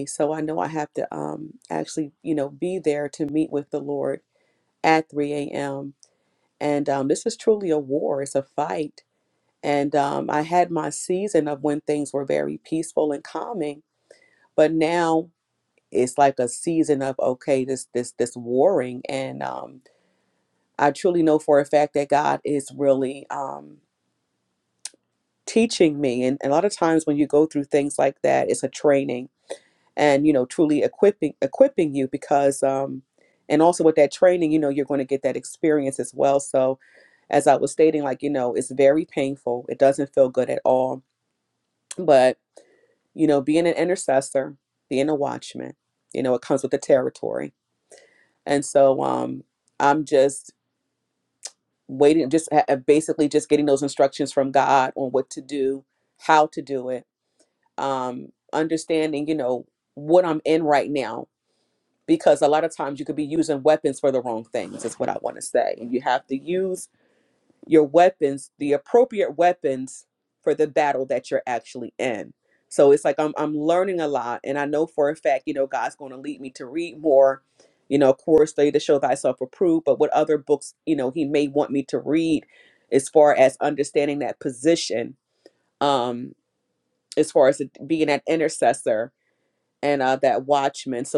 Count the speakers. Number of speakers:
one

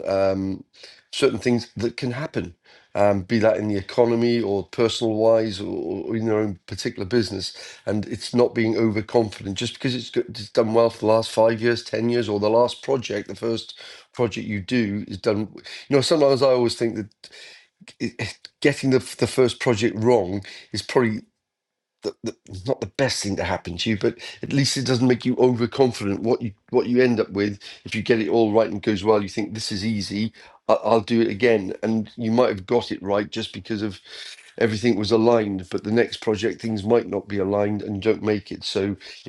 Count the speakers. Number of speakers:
one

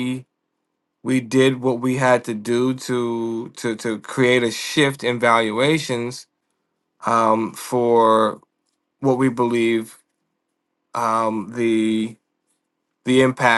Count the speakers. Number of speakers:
one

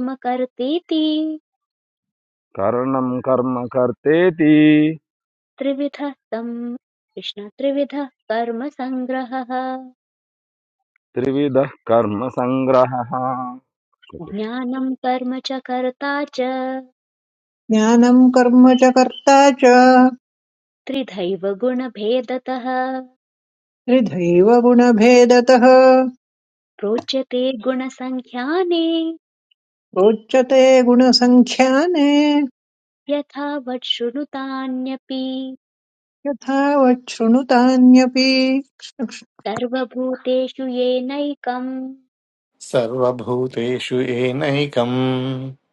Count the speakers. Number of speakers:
four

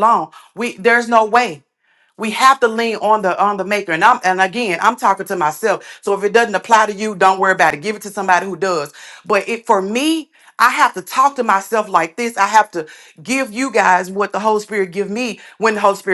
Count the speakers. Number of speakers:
one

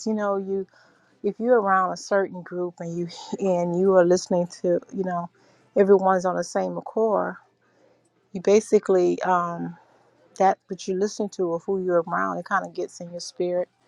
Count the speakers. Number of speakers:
one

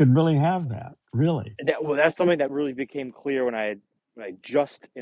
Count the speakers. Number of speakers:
two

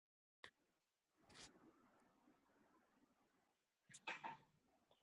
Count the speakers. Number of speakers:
zero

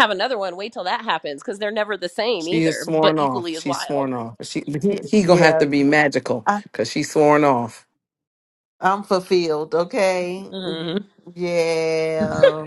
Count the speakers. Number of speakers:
three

